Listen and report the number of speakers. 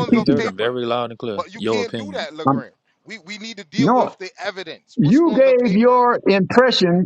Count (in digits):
3